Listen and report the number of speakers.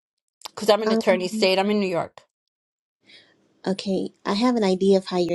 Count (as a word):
two